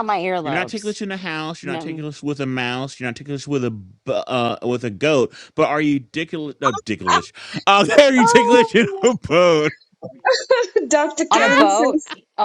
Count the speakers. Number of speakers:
three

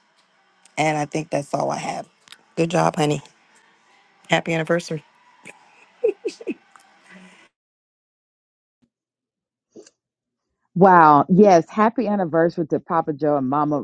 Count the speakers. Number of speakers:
two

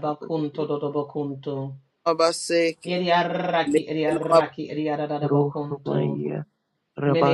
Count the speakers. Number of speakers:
three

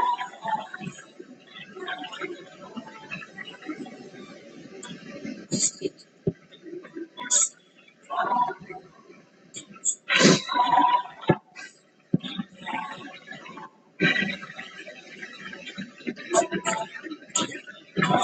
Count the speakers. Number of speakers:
zero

